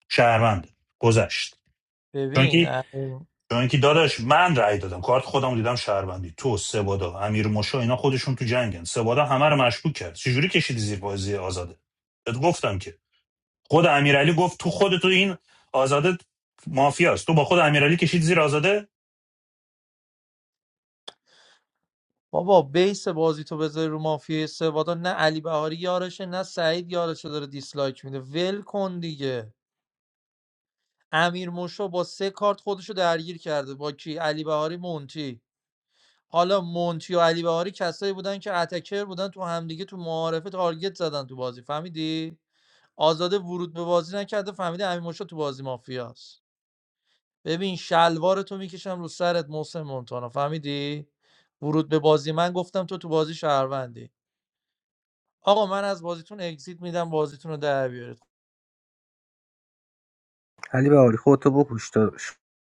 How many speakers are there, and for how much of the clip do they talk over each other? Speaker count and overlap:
three, about 1%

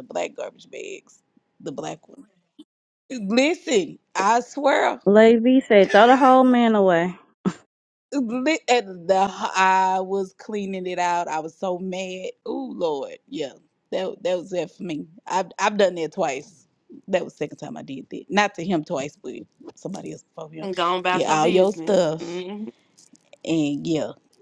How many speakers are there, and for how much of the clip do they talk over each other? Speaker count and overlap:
three, about 5%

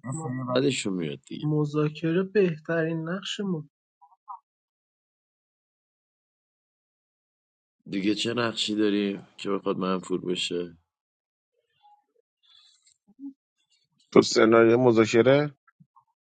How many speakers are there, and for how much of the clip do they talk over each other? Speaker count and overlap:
three, under 1%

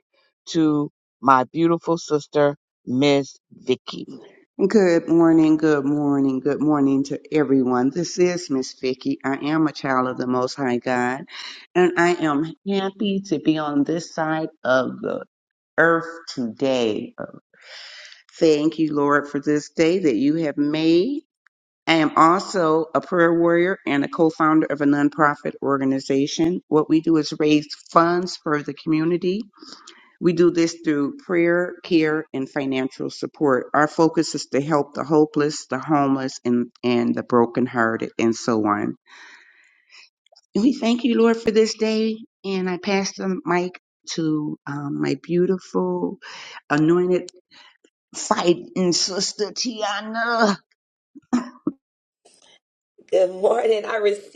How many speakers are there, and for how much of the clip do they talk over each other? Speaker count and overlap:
three, no overlap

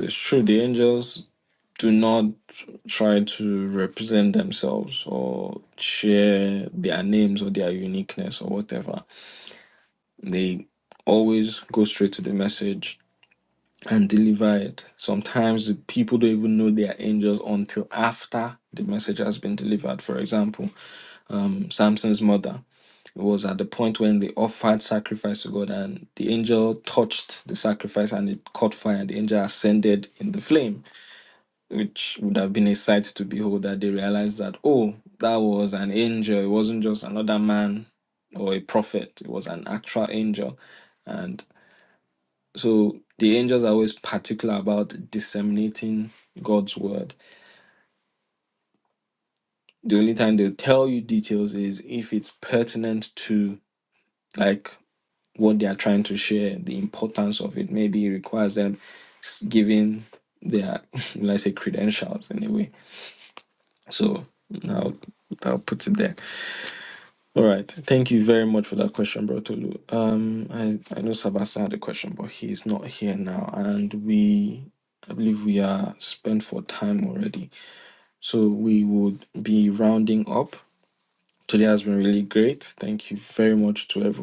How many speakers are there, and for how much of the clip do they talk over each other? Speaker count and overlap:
one, no overlap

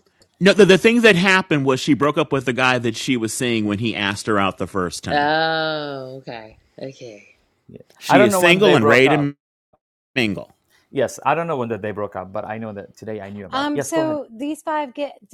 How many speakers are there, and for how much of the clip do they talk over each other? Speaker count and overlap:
four, about 14%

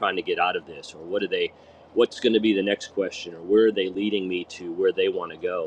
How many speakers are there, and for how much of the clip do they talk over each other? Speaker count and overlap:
one, no overlap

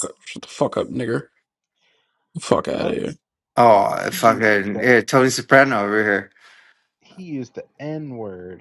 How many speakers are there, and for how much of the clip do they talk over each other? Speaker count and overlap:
three, about 13%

